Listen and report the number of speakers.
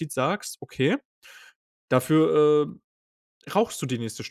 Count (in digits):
1